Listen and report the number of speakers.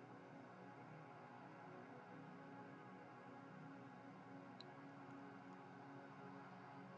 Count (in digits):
0